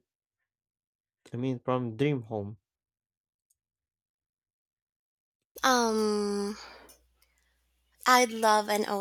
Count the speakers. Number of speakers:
2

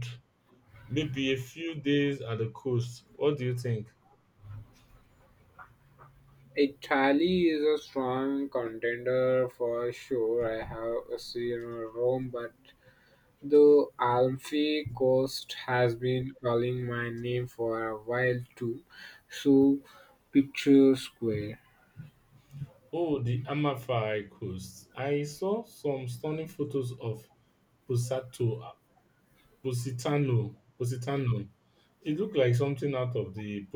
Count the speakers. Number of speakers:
2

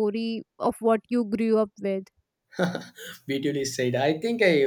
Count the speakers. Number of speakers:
2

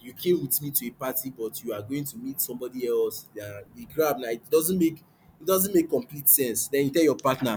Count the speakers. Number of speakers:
1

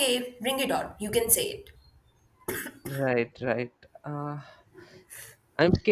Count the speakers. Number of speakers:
2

